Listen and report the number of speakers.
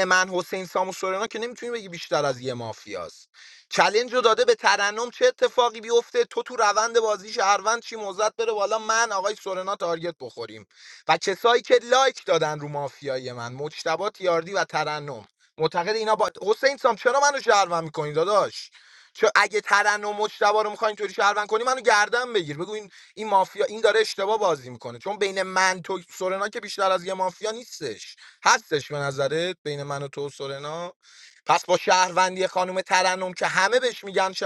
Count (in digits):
1